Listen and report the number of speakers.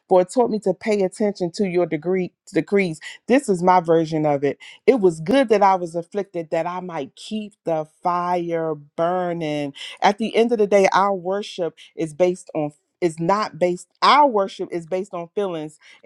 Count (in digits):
1